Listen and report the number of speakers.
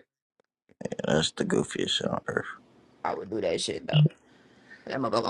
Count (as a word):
two